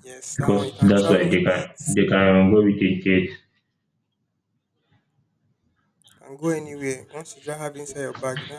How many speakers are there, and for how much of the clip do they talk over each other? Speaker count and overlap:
2, about 15%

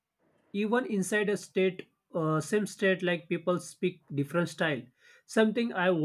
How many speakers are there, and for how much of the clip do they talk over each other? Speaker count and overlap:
1, no overlap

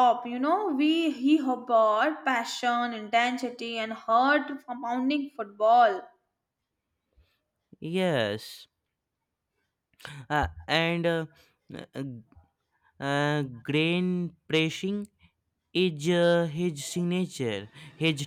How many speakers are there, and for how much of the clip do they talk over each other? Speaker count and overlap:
2, no overlap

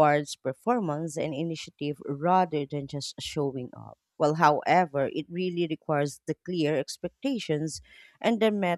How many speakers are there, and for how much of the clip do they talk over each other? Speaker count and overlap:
1, no overlap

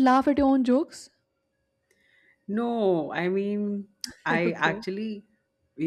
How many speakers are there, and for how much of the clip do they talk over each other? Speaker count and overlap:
2, about 6%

